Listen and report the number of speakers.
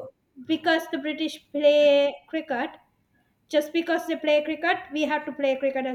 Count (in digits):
1